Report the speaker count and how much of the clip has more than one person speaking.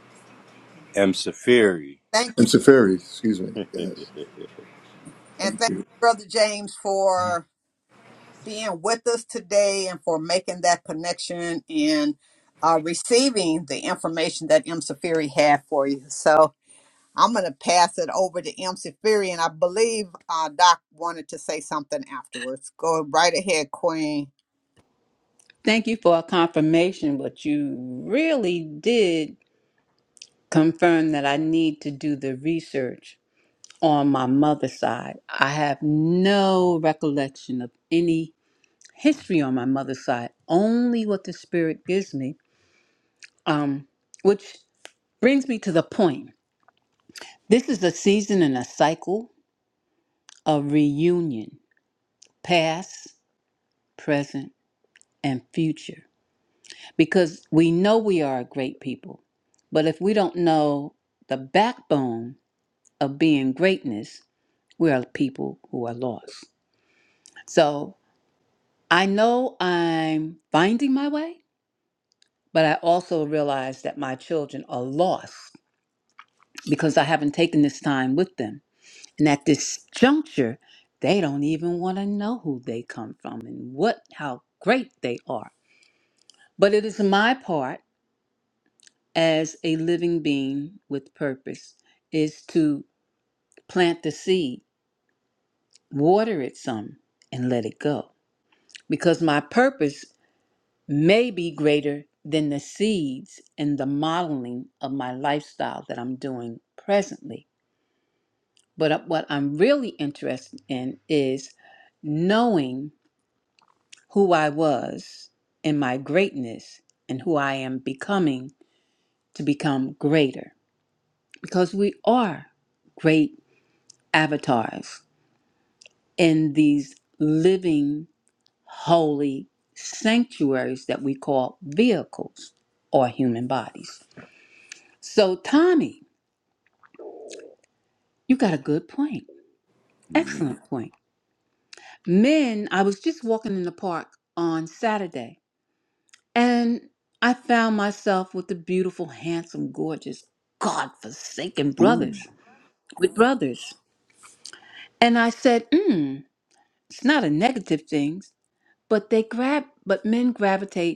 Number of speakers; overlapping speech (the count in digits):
4, about 1%